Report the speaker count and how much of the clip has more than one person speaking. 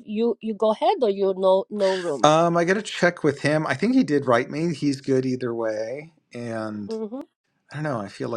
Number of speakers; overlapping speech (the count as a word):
two, under 1%